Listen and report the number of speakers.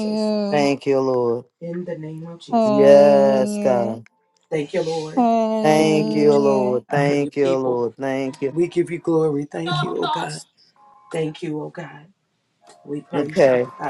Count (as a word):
three